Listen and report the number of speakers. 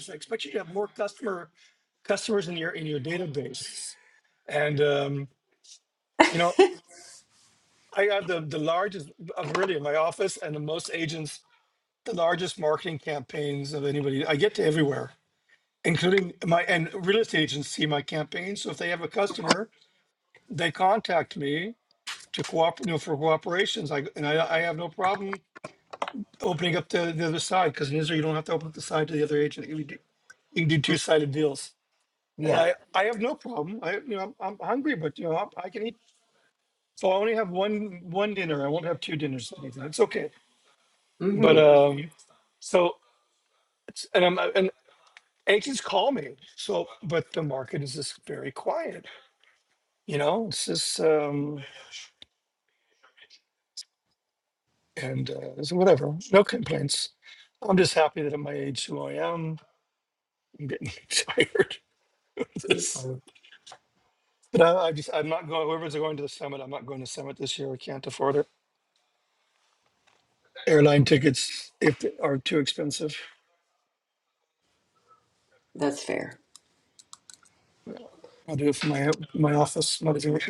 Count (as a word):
two